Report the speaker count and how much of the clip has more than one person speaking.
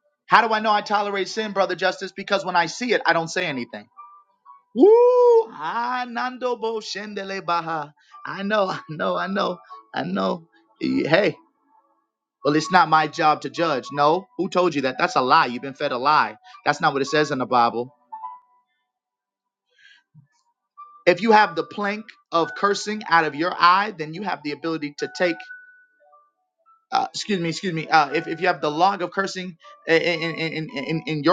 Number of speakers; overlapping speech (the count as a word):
one, no overlap